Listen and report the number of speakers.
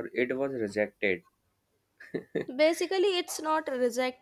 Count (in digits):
2